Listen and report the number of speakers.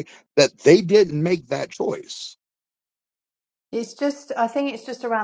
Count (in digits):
2